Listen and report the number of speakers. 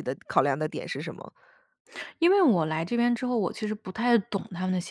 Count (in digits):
2